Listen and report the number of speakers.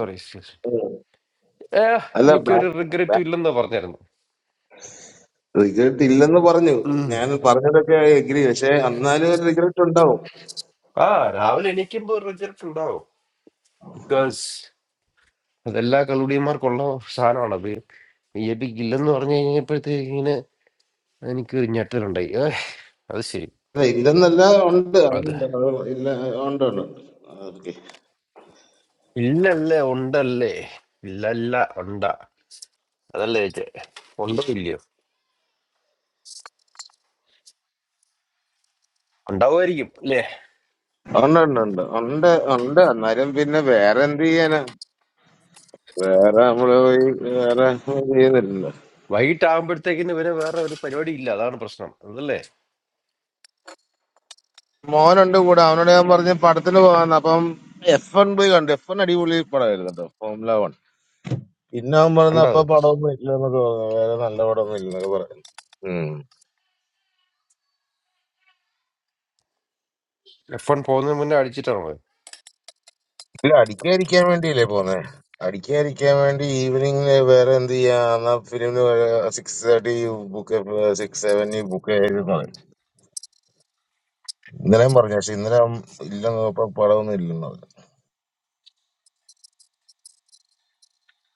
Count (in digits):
2